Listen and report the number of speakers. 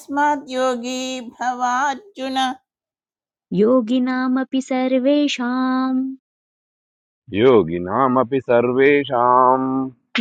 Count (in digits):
3